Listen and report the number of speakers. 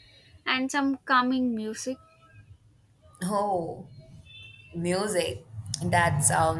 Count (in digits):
2